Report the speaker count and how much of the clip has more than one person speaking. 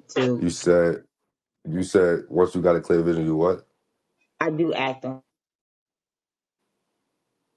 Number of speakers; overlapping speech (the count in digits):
2, about 6%